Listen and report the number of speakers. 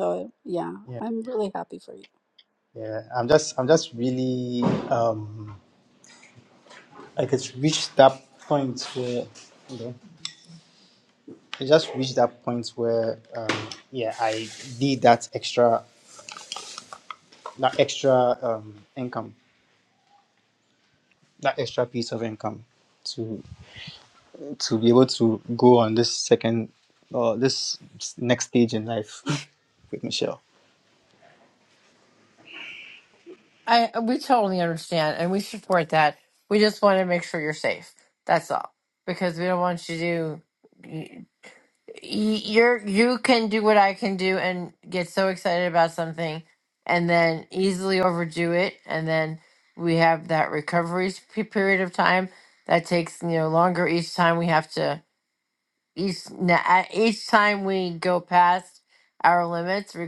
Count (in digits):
3